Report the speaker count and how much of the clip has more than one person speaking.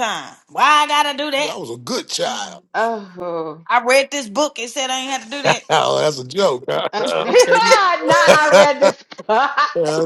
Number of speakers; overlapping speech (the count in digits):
3, about 16%